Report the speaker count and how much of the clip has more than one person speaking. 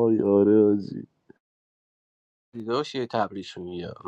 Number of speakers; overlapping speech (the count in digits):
2, no overlap